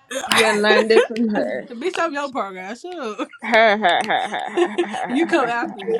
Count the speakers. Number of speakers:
2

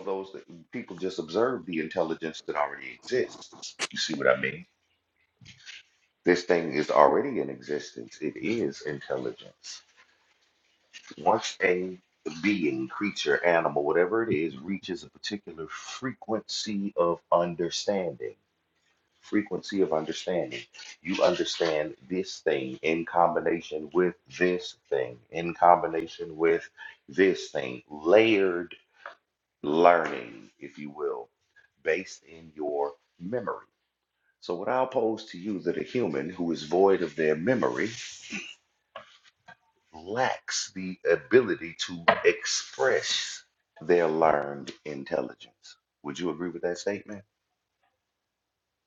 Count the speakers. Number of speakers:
1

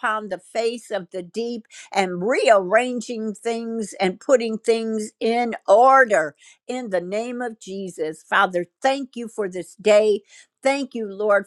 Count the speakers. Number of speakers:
1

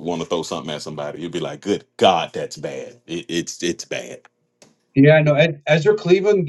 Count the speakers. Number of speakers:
2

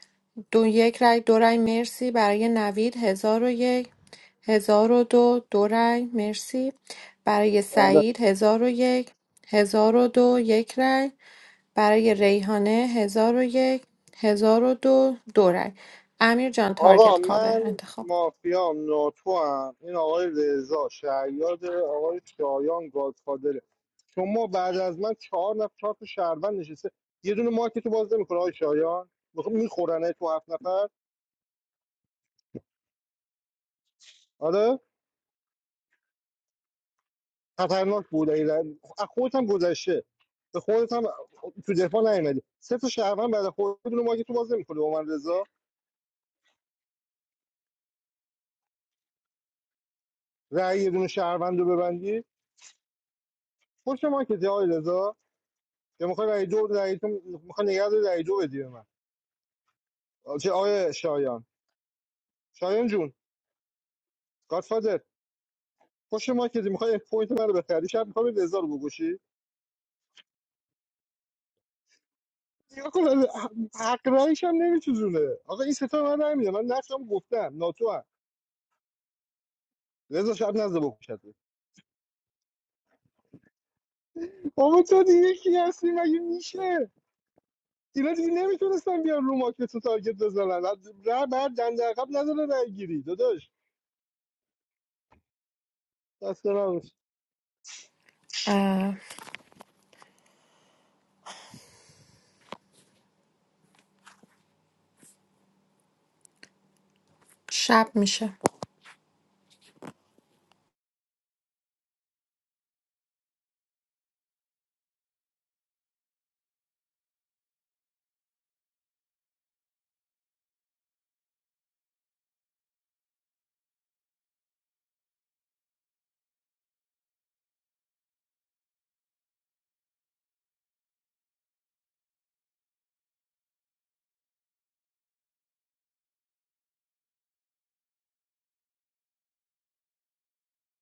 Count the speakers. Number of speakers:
2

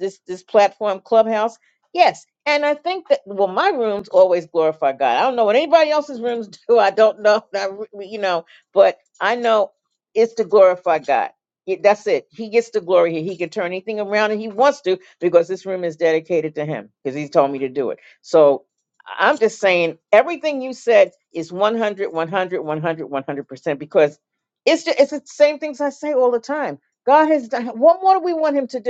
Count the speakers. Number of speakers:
1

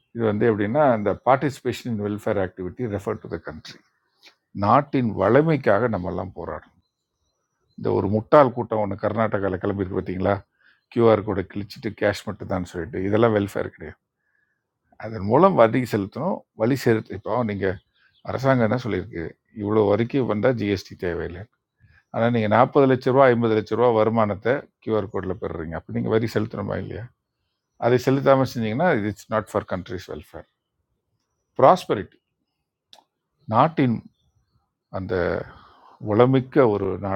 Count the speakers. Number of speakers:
1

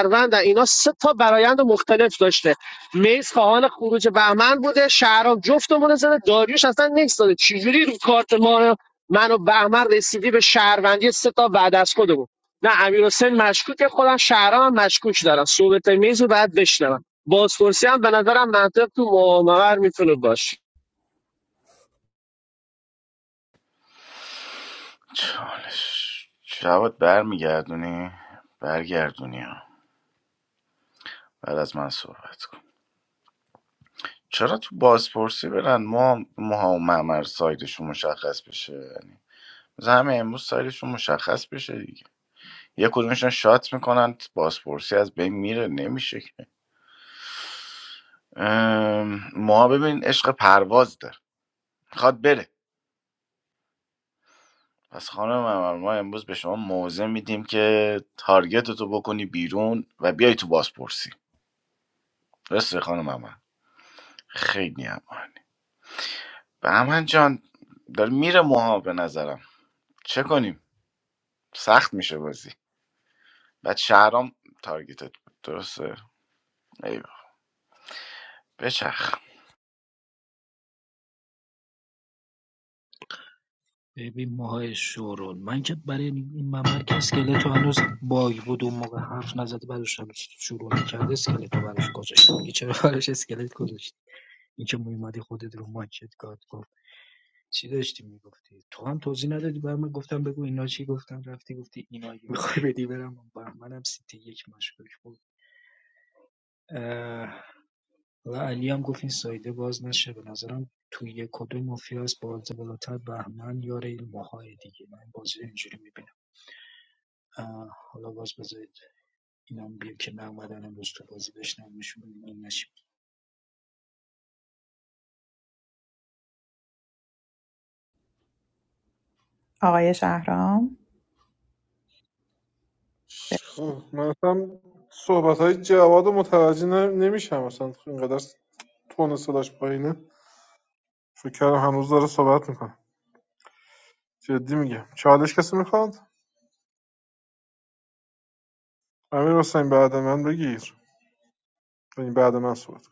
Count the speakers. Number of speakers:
5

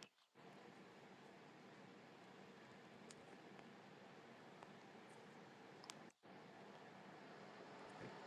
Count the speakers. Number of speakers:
0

